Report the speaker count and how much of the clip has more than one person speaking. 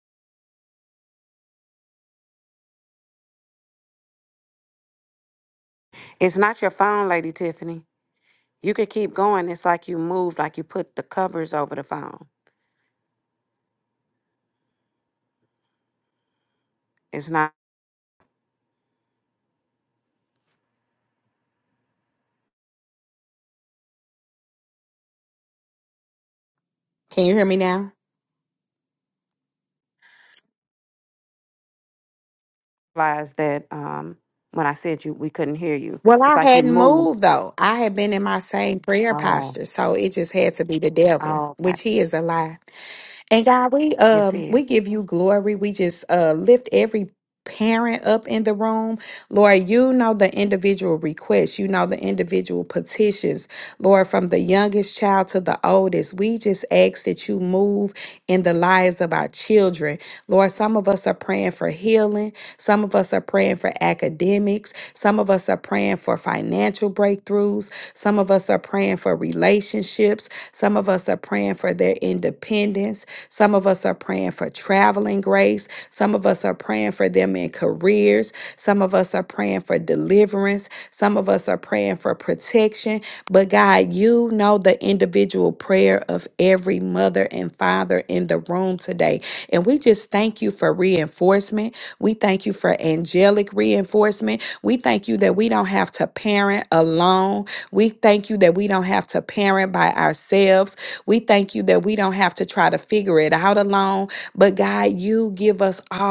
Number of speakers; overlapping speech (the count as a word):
two, about 2%